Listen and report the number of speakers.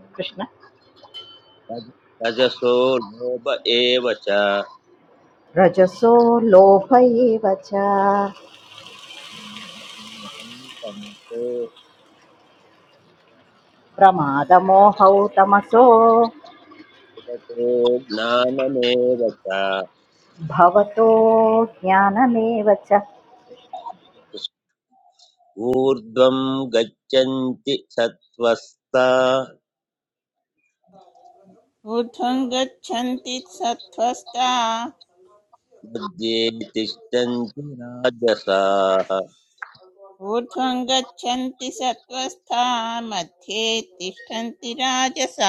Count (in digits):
3